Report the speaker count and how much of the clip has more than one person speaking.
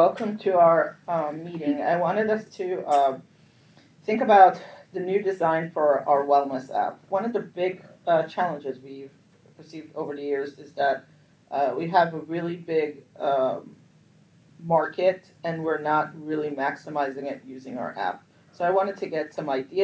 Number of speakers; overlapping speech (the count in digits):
1, no overlap